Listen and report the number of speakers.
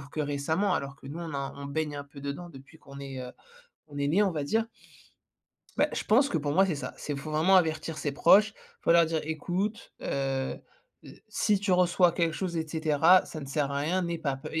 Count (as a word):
one